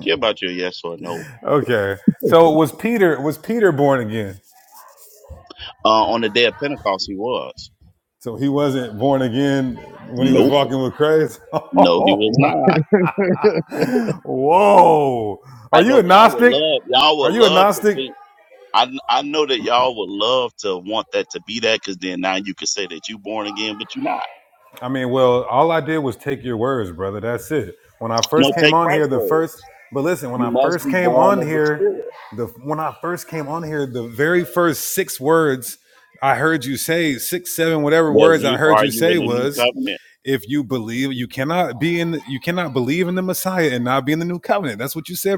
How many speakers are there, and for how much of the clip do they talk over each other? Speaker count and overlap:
2, about 16%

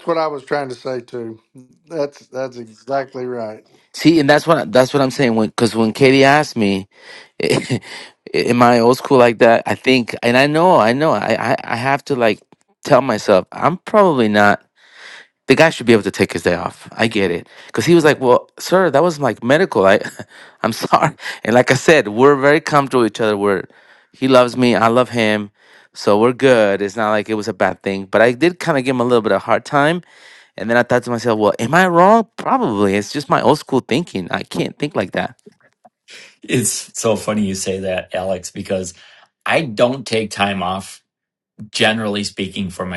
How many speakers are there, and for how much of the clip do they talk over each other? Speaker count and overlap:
3, no overlap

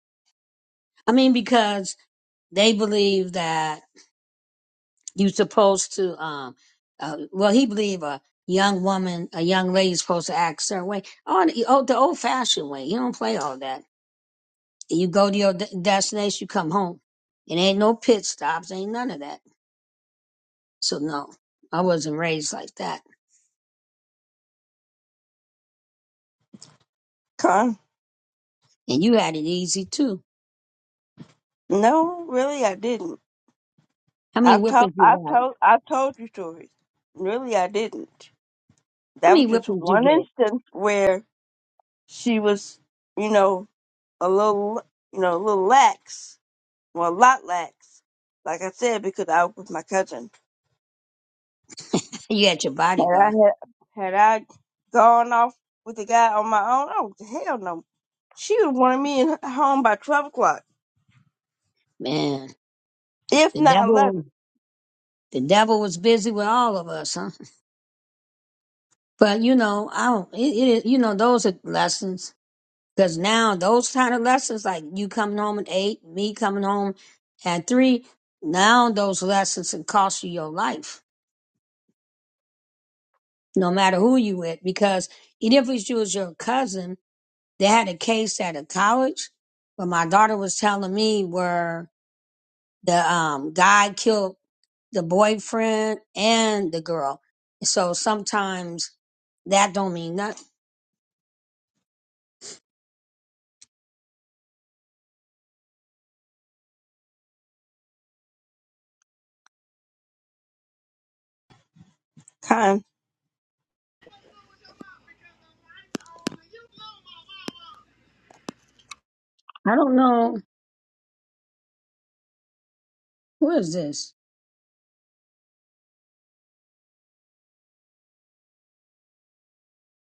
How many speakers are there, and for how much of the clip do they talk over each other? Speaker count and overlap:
2, about 2%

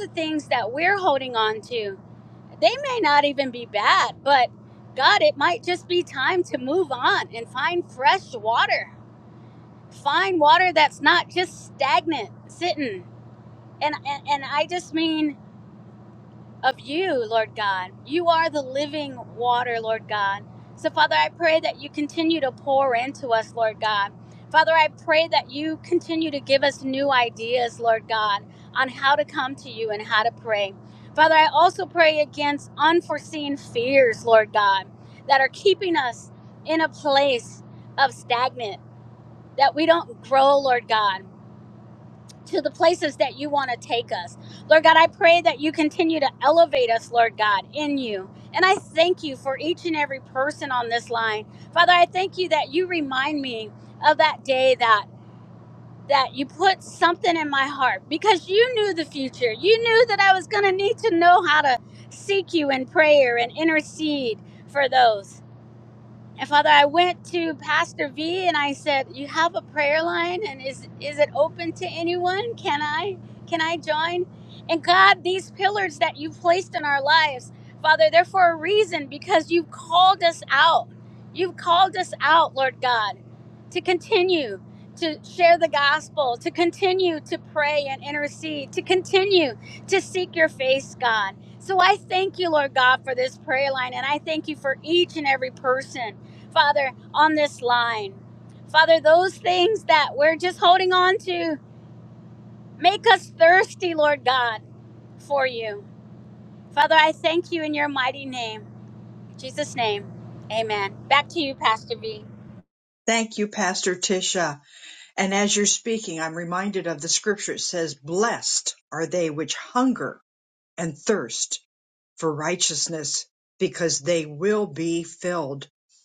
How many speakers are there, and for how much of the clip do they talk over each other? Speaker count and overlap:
2, no overlap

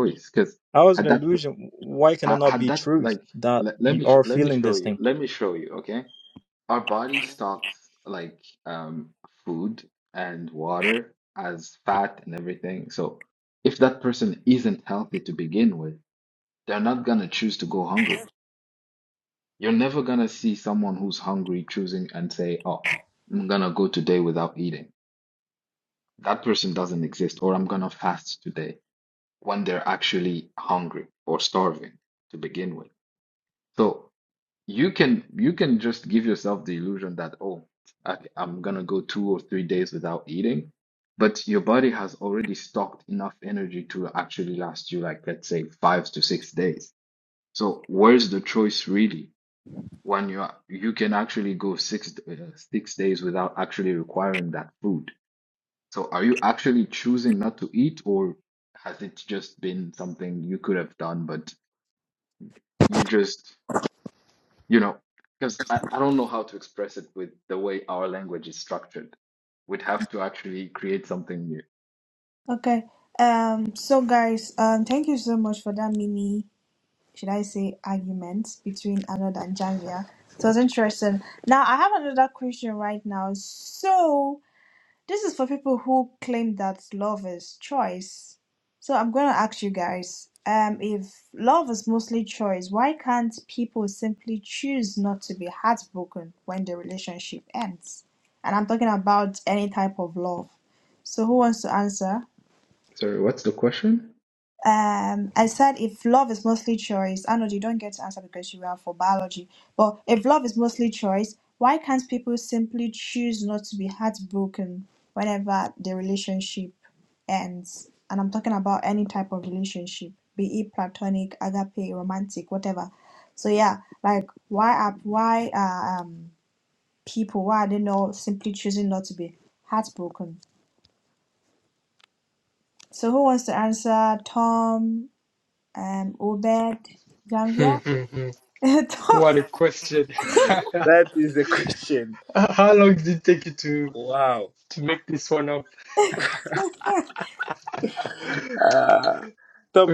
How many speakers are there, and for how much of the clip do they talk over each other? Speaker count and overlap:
5, about 2%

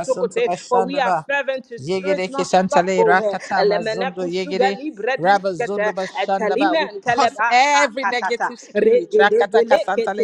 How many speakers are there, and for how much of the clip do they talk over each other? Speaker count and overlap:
2, about 86%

